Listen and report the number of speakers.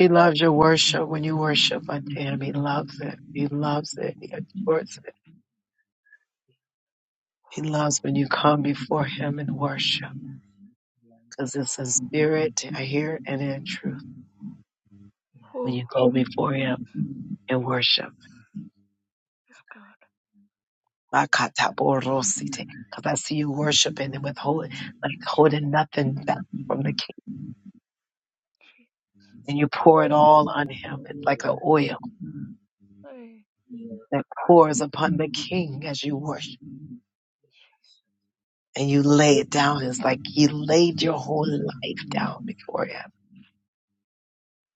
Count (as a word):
two